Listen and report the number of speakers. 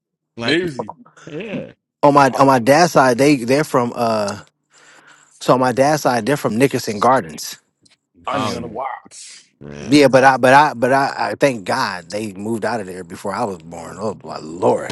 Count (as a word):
three